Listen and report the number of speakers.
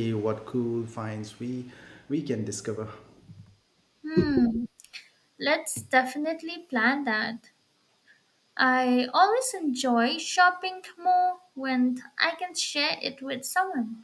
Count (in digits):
2